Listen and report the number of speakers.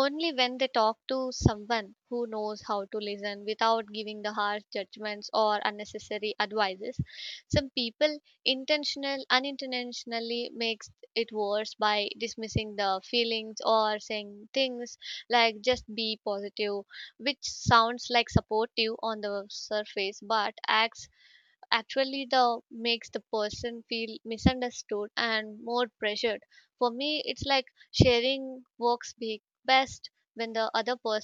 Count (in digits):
1